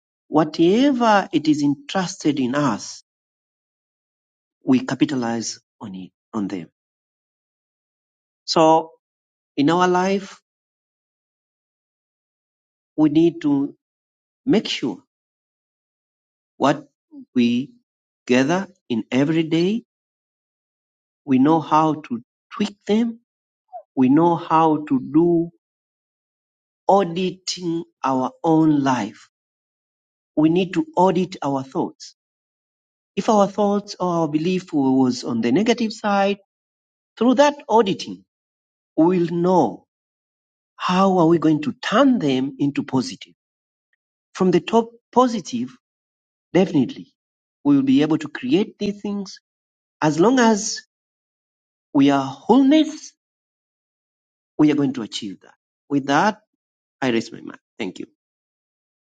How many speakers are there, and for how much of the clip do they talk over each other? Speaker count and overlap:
one, no overlap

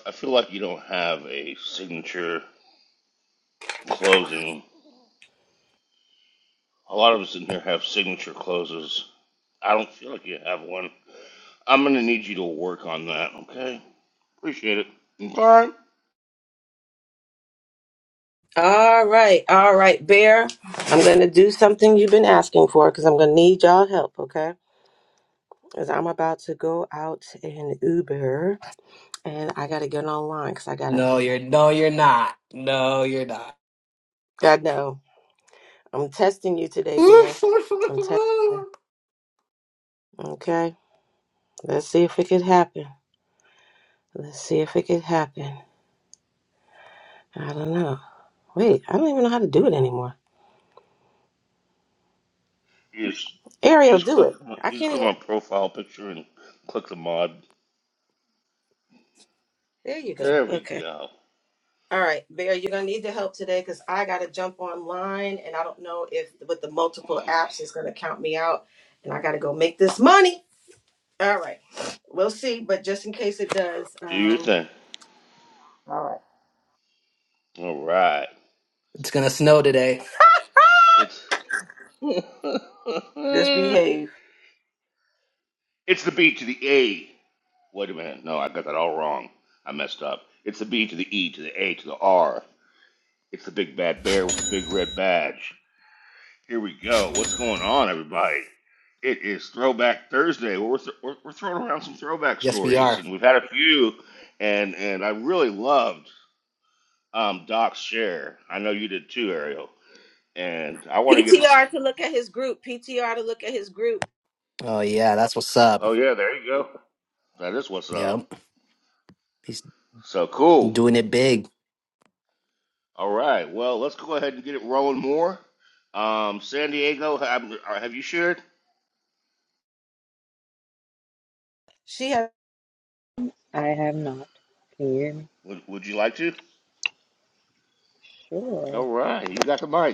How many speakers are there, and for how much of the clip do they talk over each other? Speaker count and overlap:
four, about 3%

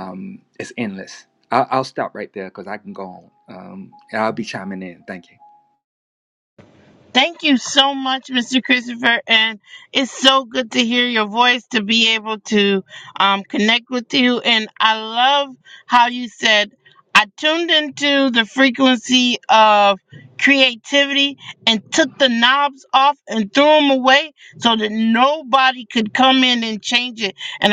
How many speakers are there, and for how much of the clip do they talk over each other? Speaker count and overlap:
two, no overlap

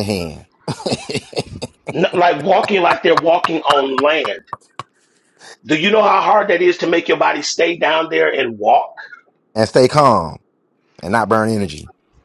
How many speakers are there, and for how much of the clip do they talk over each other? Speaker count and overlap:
two, no overlap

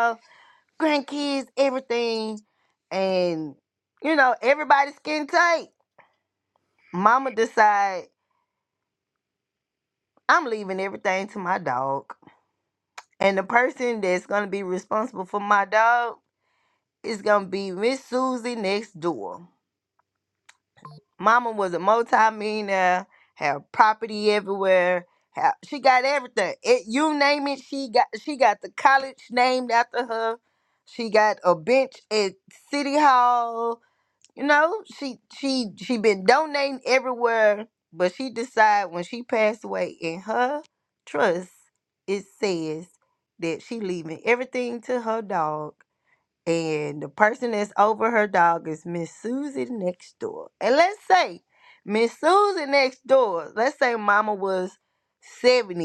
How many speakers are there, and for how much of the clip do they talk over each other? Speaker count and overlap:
one, no overlap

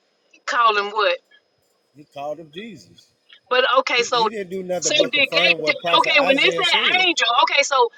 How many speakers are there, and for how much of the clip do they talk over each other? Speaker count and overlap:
two, about 33%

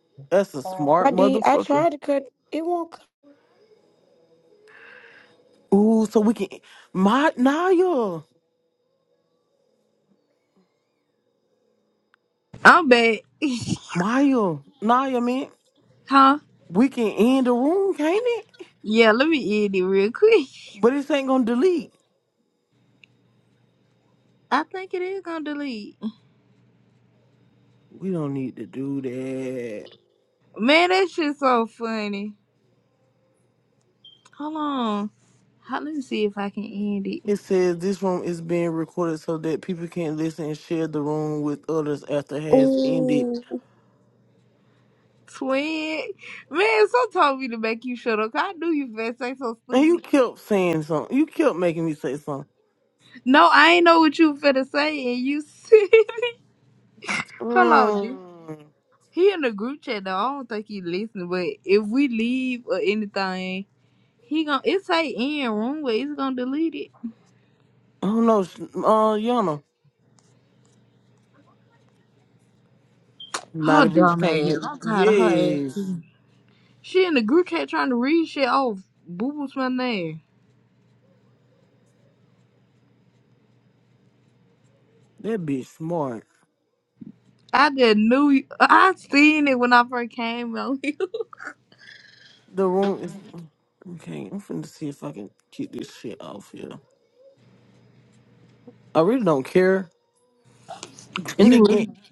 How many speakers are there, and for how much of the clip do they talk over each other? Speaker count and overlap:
three, about 5%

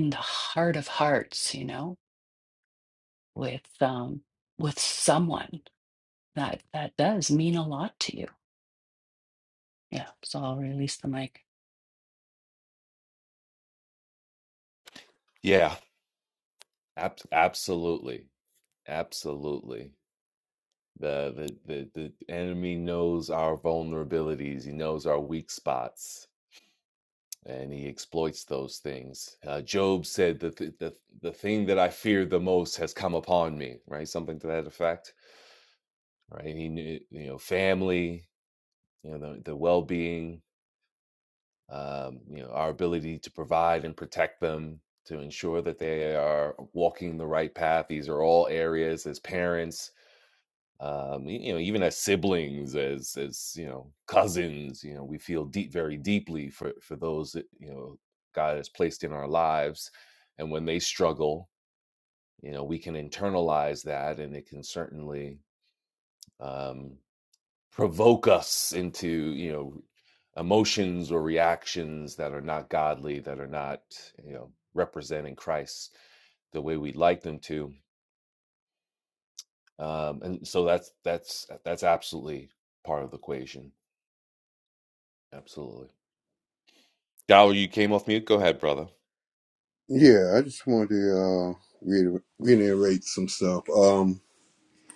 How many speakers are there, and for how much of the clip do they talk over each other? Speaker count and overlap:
three, no overlap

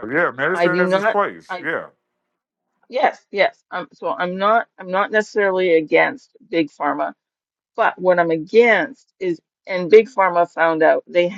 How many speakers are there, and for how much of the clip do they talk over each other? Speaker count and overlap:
two, about 7%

